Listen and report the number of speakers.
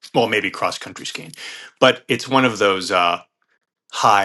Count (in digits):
1